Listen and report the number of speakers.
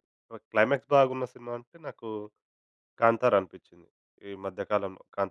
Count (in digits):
1